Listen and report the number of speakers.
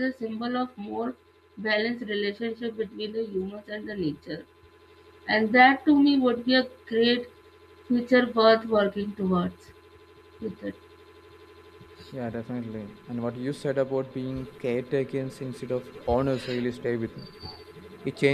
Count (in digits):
2